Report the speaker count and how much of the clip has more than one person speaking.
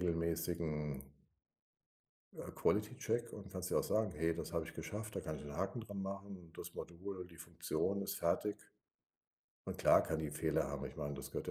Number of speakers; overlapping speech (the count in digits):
1, no overlap